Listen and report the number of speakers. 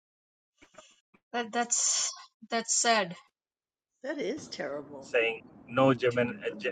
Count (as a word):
three